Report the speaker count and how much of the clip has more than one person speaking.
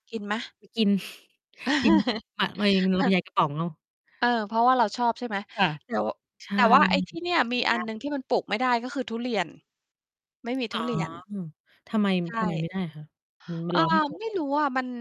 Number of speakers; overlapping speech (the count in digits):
2, about 7%